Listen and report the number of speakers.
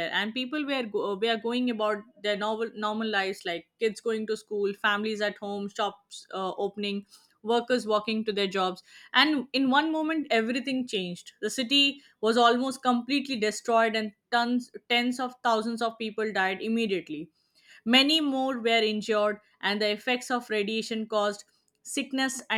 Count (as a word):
one